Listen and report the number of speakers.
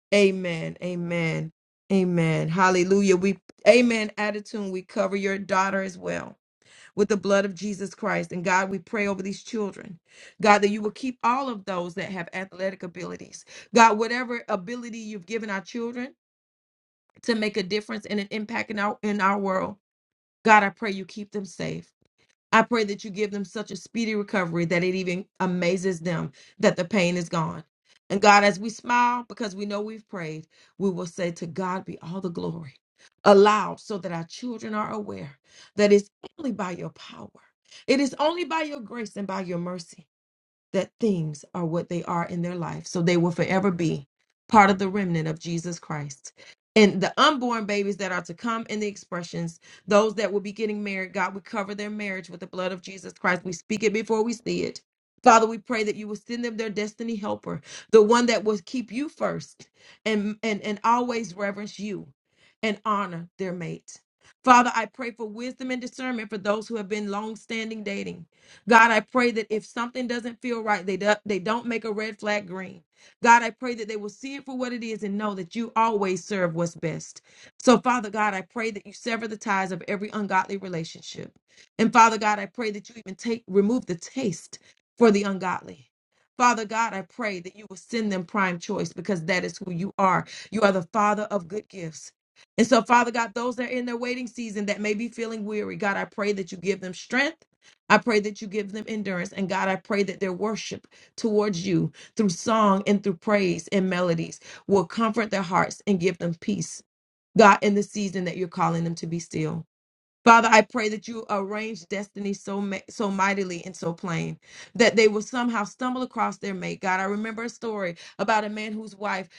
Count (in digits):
1